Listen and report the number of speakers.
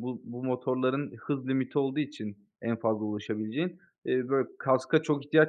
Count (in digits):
1